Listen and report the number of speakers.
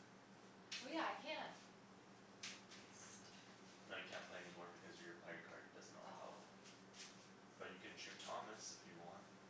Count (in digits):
2